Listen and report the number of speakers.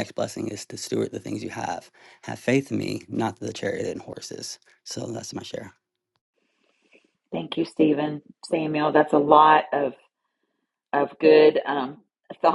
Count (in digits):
2